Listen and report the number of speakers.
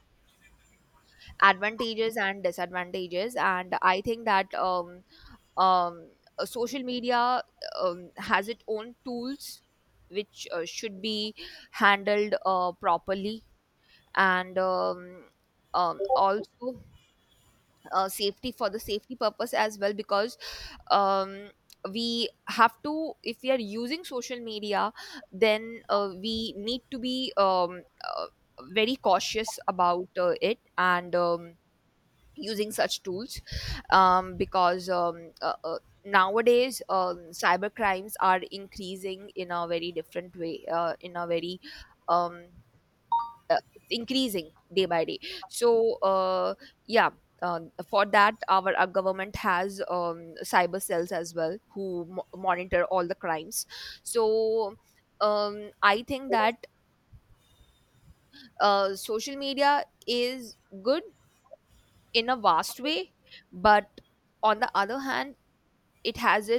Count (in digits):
1